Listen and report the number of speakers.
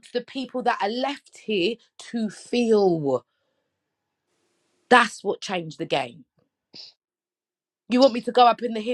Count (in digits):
1